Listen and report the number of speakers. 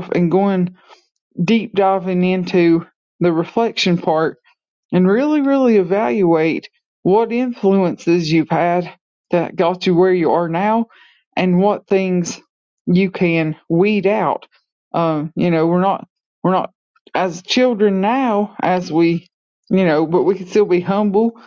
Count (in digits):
1